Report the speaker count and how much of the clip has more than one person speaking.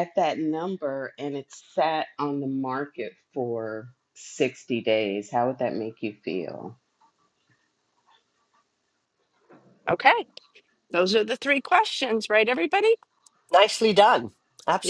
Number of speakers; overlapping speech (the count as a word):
three, about 1%